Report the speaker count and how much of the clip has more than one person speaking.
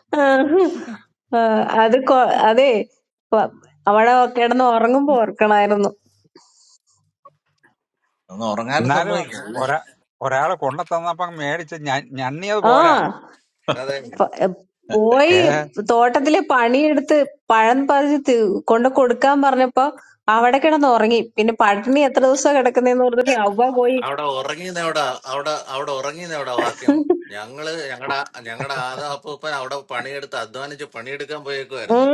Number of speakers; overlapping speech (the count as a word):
four, about 3%